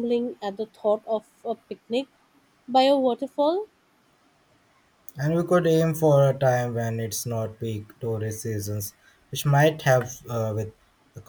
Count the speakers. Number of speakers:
2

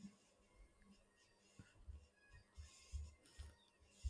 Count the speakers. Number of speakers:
0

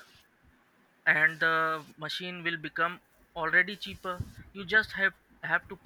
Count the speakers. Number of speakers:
1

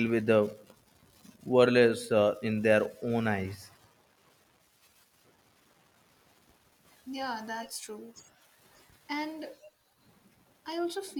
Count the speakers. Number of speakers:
2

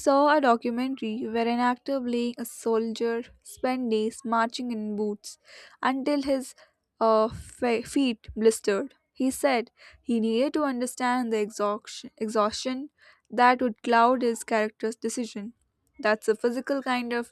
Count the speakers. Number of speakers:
1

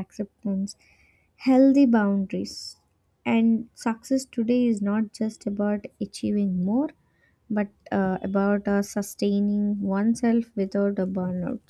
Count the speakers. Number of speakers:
1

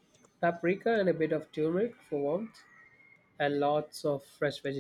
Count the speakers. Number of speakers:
1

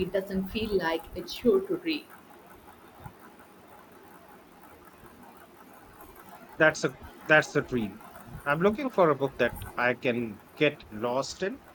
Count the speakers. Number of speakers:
2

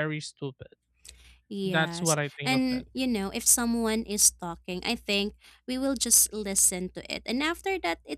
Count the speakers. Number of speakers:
2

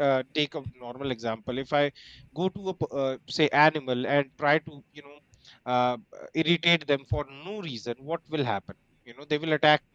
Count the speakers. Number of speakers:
1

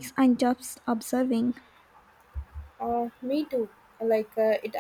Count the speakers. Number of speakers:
2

